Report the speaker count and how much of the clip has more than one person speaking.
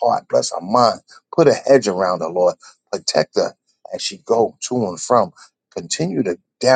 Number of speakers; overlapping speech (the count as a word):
one, no overlap